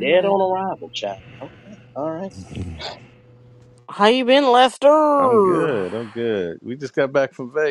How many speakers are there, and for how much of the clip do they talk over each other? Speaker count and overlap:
three, about 12%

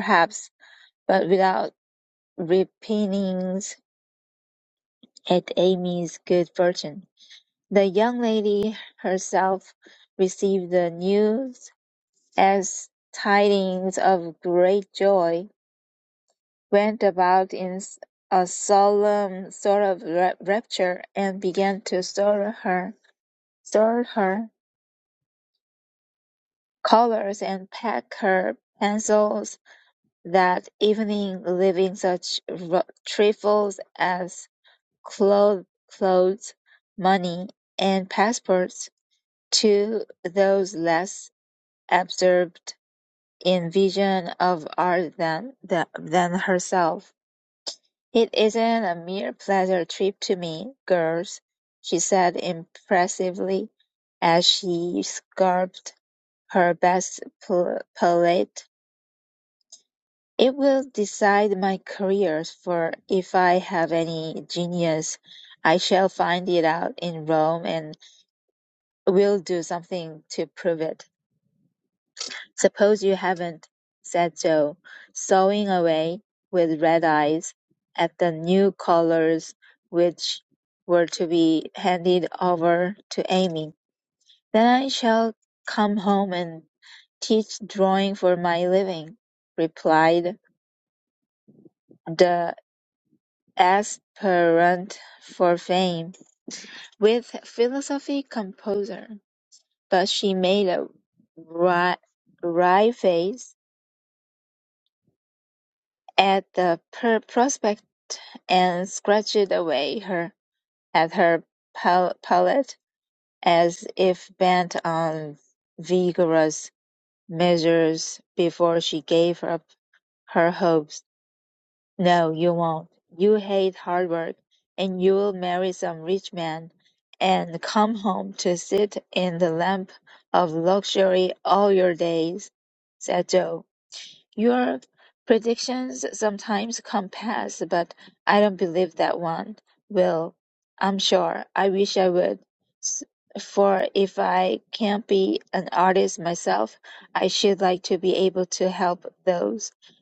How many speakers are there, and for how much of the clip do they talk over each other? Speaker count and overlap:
one, no overlap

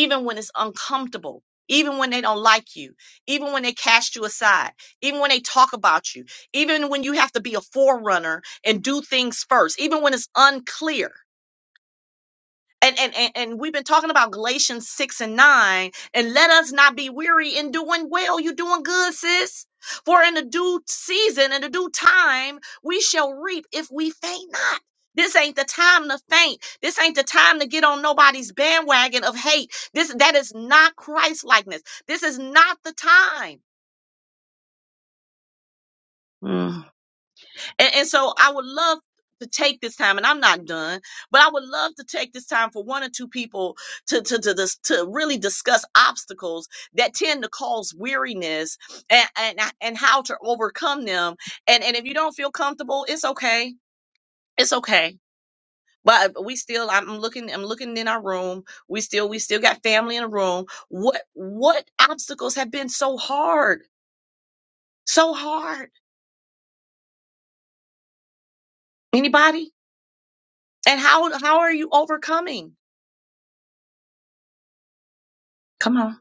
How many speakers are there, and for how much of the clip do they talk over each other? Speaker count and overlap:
one, no overlap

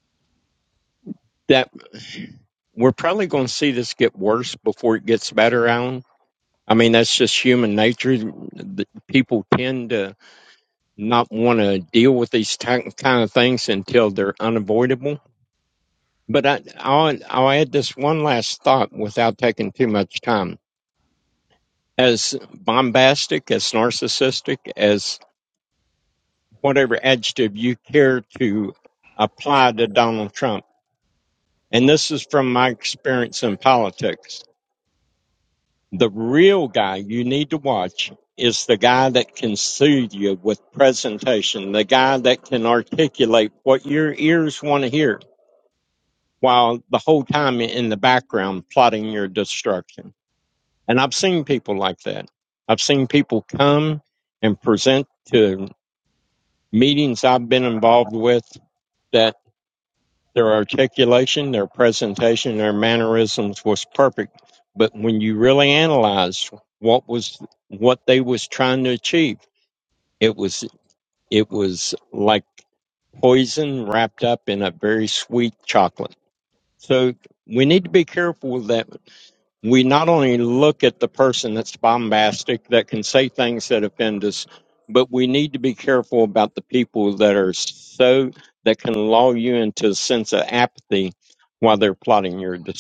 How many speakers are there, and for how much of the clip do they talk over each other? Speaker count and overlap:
one, no overlap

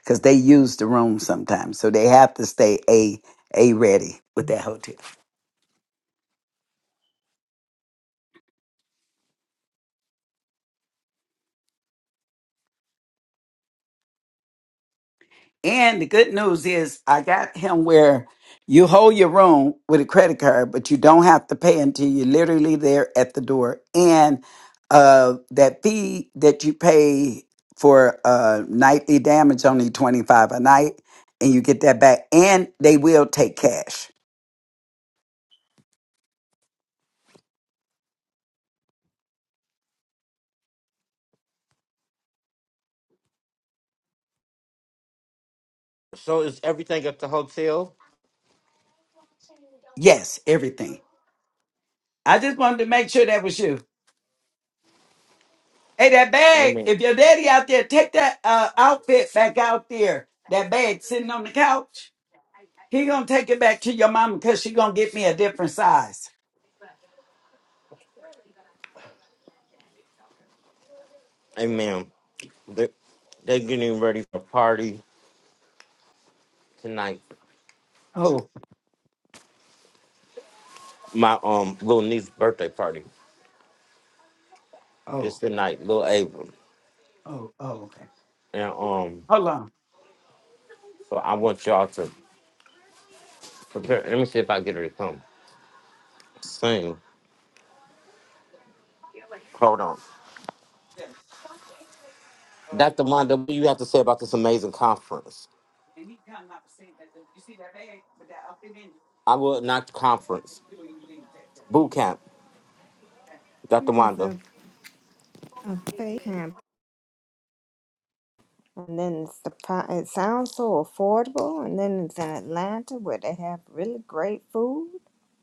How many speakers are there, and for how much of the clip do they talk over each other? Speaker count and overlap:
three, about 1%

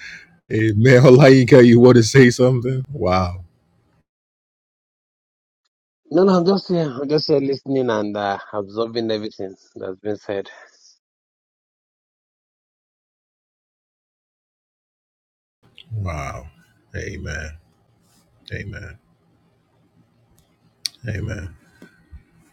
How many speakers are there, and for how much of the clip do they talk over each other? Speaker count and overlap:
two, no overlap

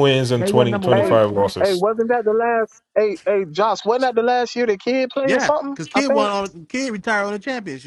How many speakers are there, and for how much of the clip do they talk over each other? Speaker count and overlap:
three, about 25%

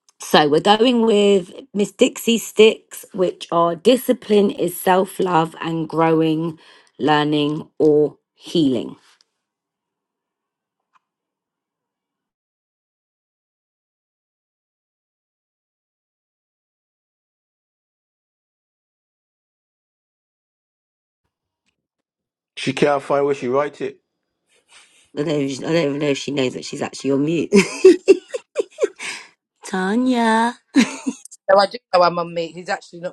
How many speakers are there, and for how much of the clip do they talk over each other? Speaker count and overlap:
three, no overlap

